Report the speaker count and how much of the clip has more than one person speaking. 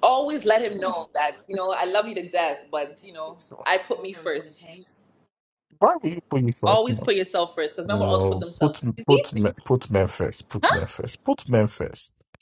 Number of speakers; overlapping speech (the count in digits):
2, about 16%